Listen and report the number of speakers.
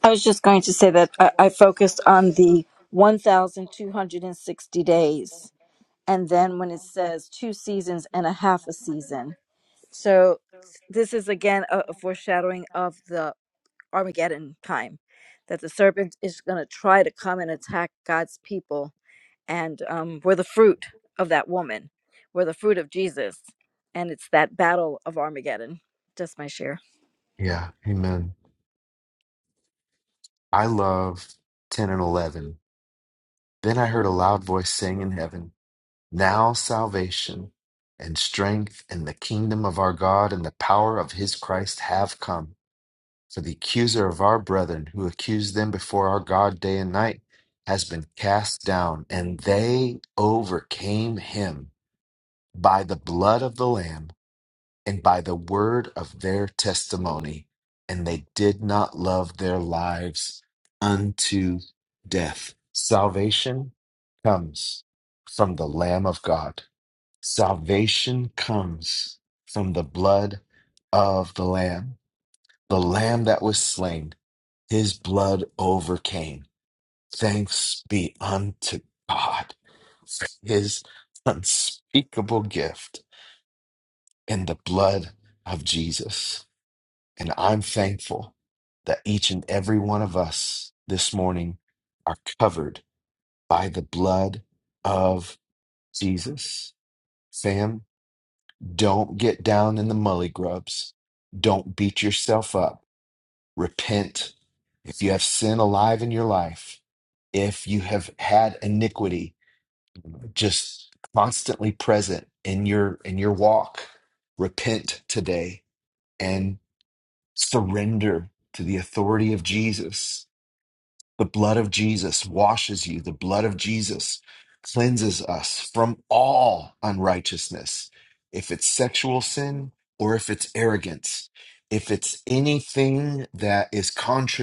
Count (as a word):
two